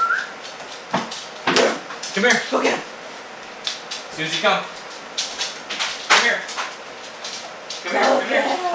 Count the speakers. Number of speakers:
2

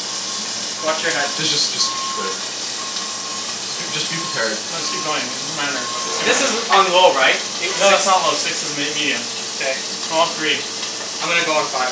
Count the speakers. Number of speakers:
3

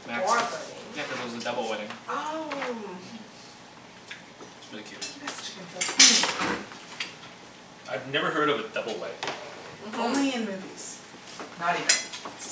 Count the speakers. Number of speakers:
4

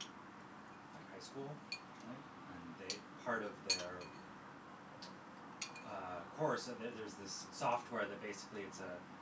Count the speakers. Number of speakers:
1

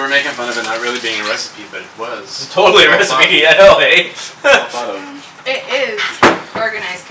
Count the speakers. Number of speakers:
3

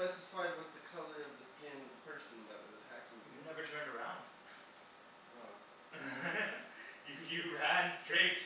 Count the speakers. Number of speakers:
2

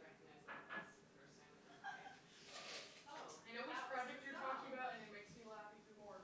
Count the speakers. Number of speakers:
2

